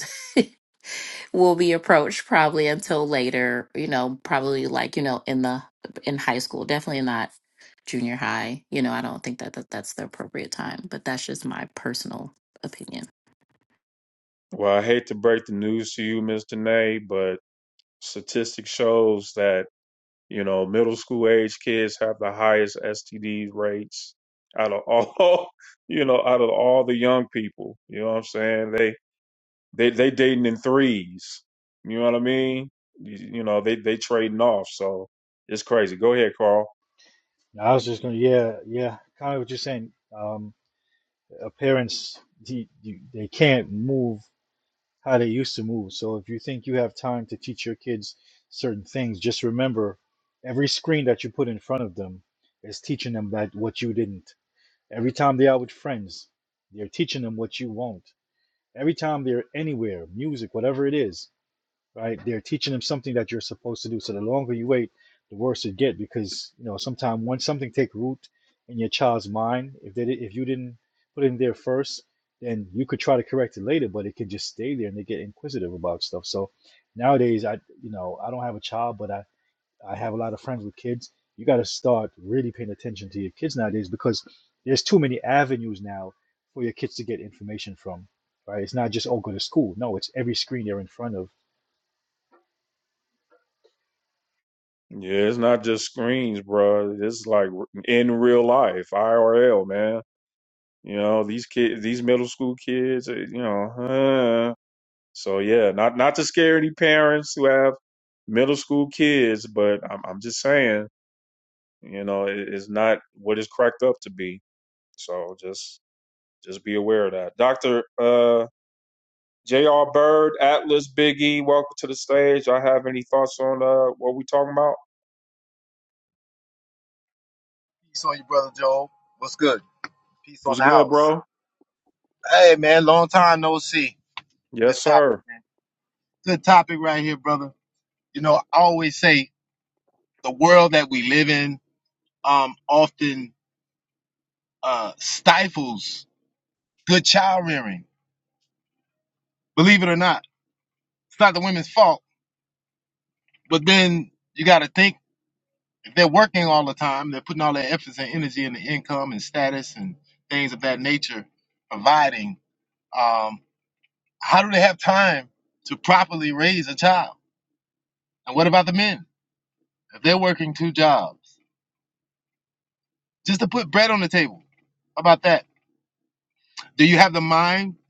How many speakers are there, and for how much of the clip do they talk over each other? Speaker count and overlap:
four, about 1%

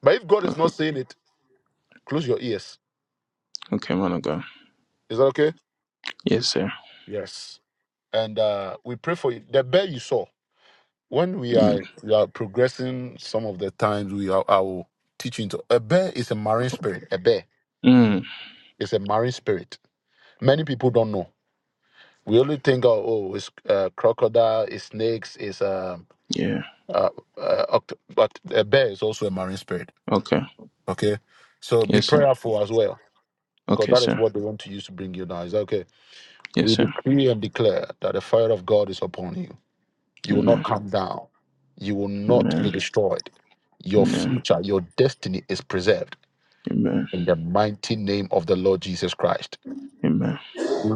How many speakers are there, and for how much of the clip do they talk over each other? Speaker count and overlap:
two, about 6%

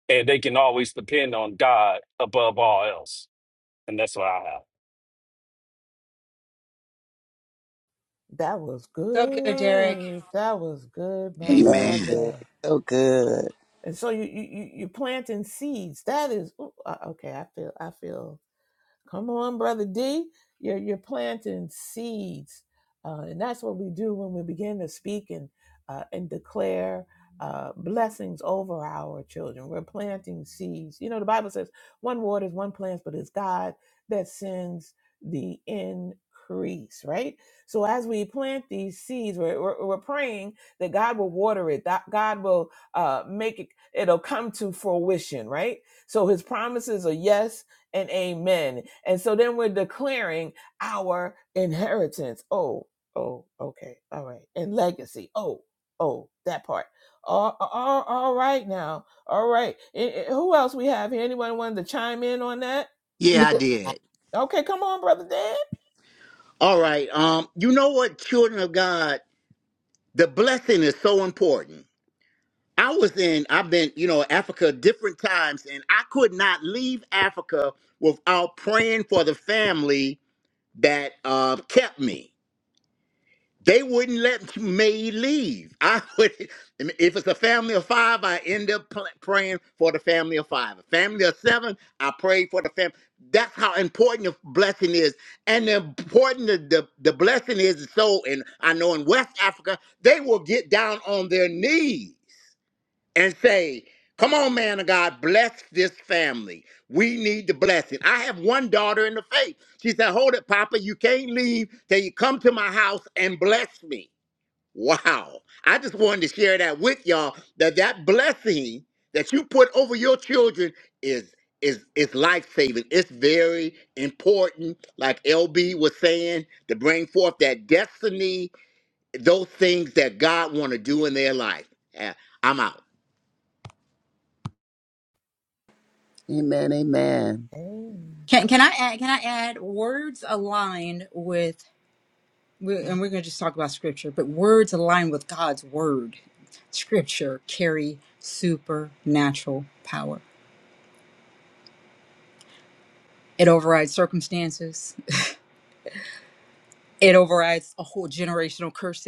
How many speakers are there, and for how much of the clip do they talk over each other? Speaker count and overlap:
five, about 1%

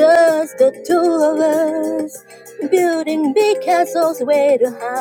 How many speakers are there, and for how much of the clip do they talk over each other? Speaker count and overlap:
one, no overlap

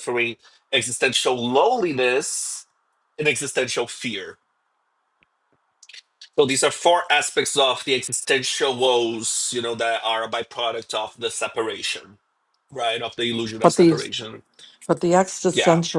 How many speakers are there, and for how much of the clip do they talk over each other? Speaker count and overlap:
two, about 4%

